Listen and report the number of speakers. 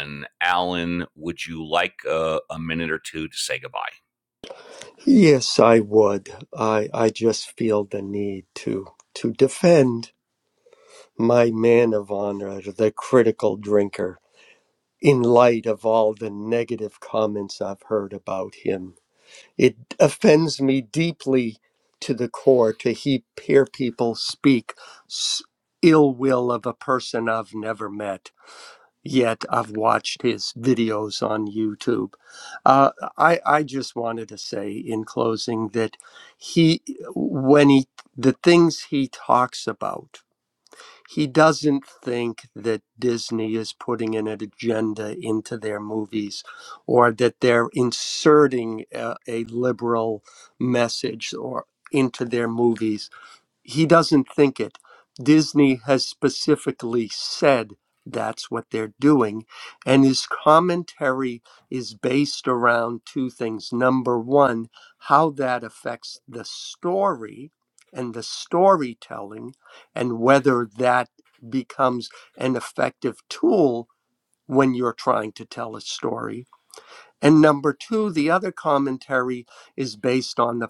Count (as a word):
two